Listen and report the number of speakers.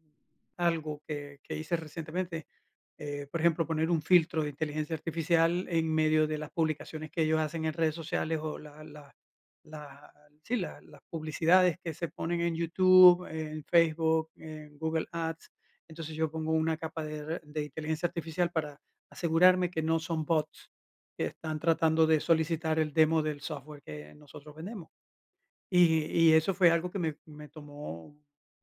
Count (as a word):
one